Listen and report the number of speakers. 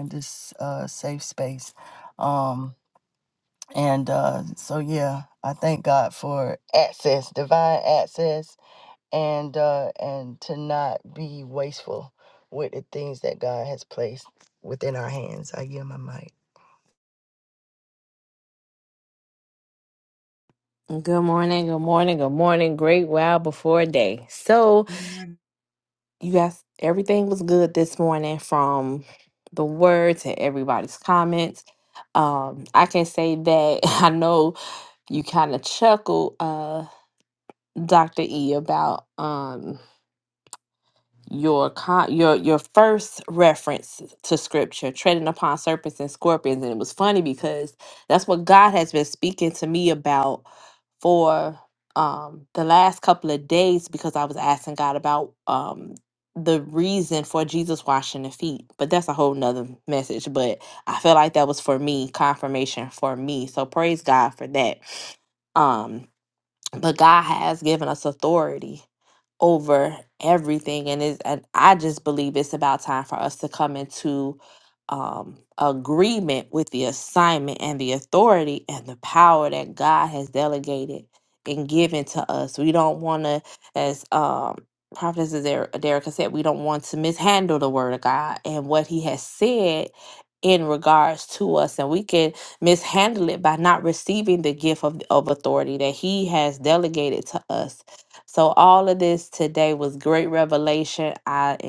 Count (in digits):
2